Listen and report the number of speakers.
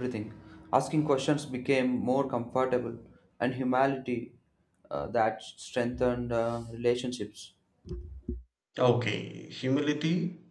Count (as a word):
two